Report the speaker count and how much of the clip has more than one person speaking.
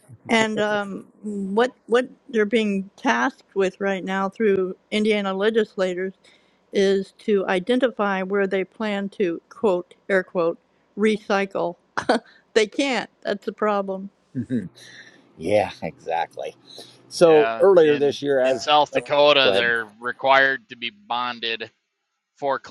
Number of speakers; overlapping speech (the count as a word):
three, about 7%